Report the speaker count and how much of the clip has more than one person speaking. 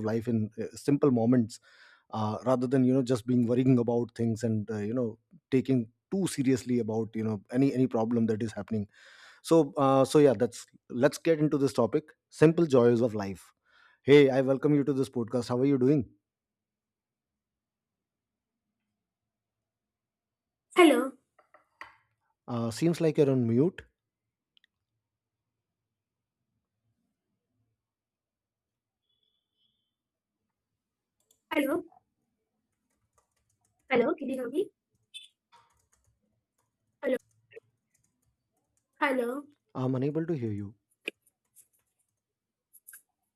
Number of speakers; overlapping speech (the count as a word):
two, no overlap